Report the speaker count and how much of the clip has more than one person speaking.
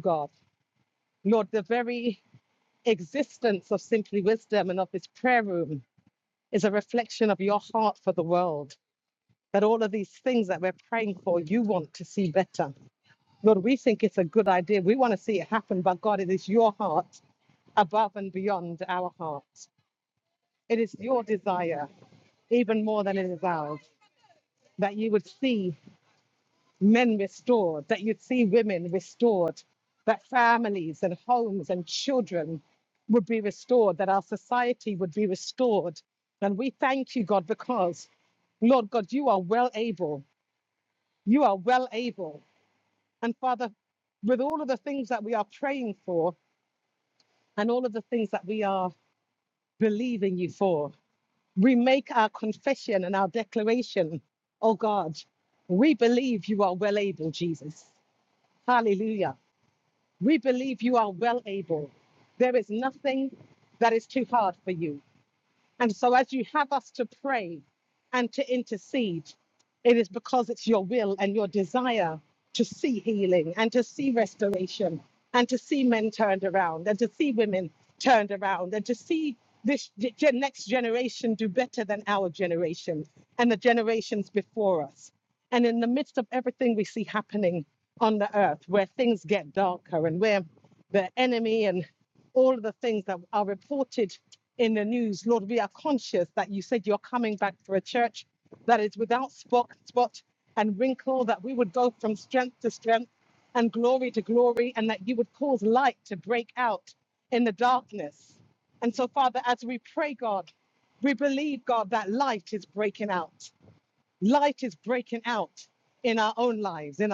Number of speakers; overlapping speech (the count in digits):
1, no overlap